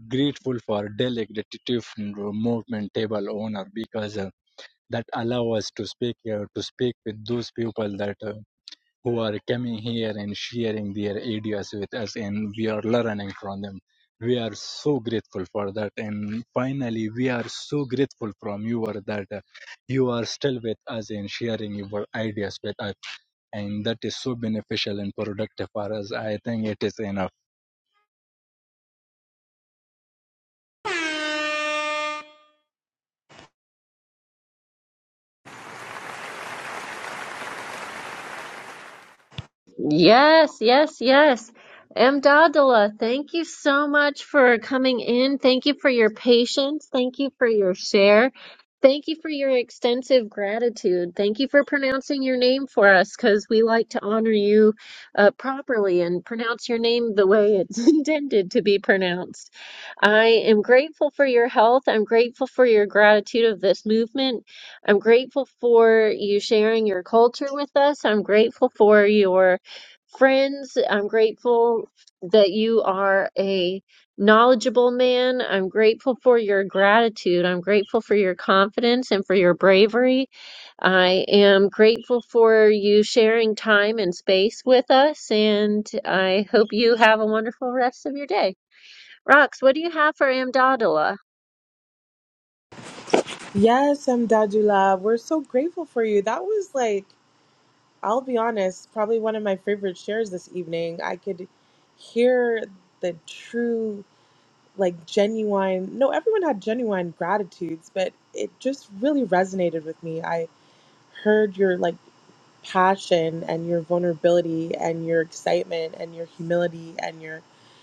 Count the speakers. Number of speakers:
3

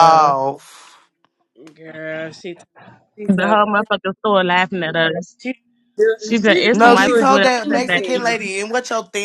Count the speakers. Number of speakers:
3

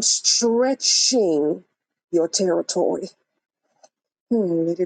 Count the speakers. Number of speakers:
1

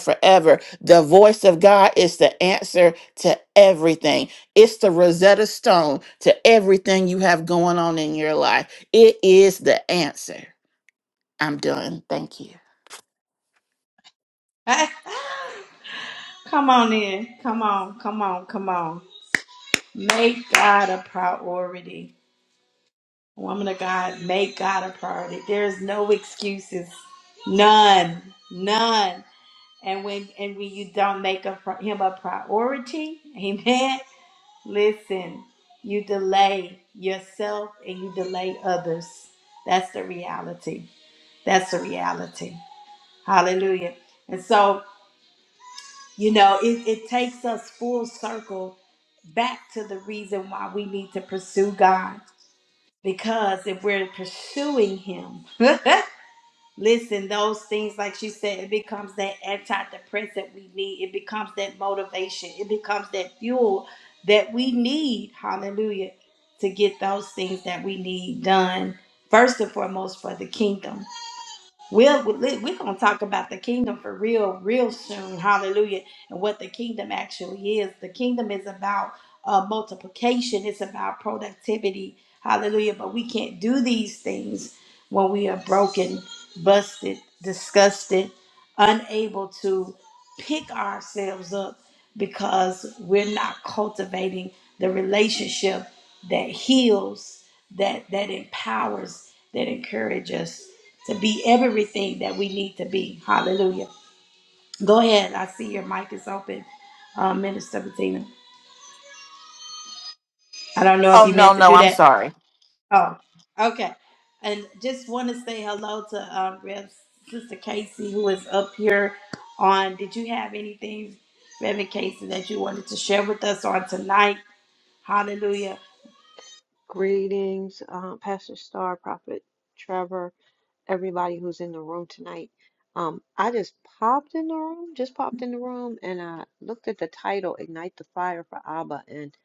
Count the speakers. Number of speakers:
3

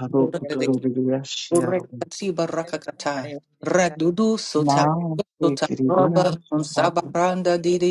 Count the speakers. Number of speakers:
2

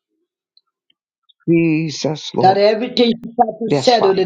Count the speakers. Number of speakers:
2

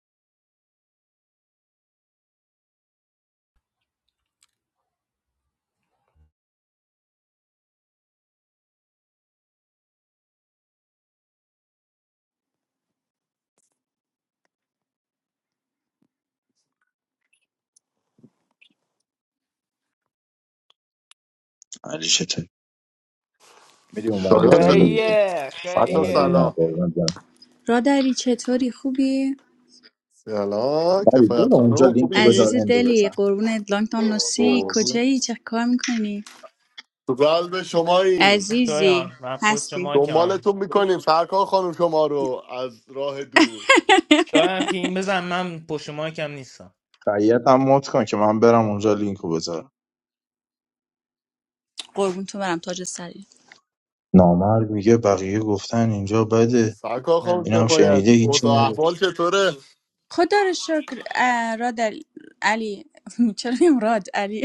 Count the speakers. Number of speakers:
4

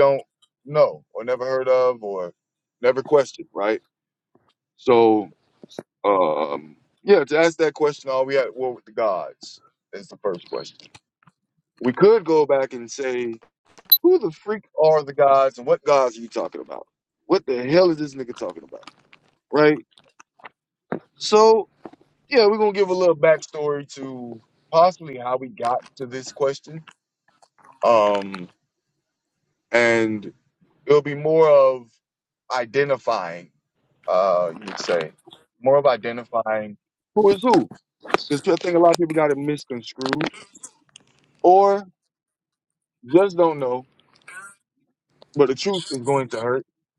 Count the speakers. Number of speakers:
1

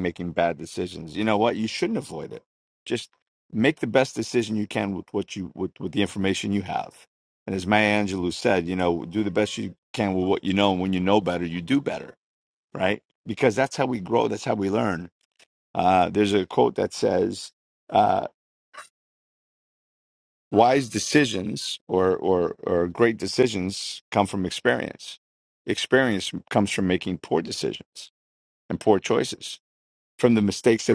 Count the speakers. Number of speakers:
1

